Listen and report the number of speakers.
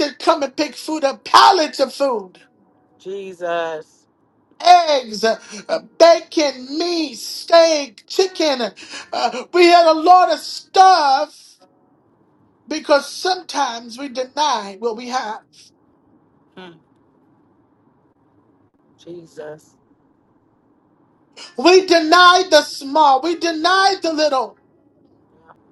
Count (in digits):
2